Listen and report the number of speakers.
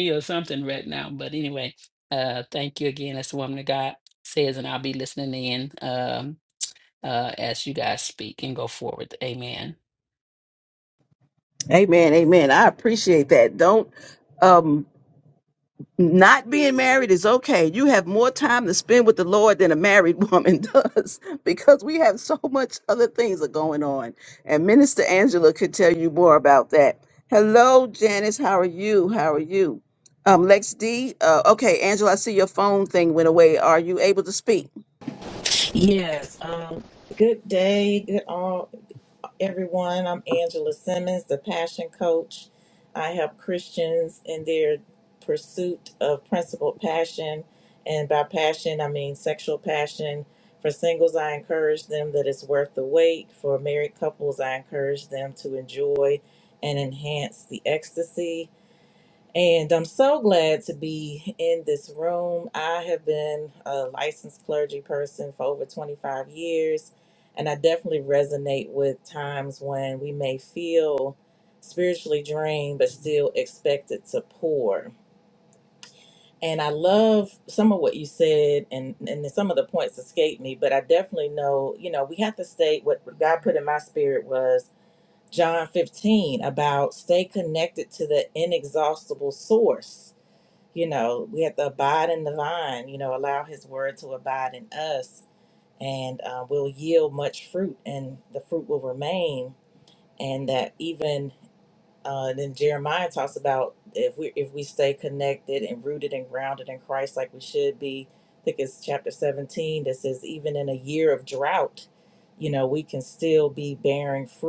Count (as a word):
three